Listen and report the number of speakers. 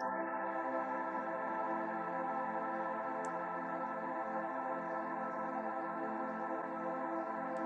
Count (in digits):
0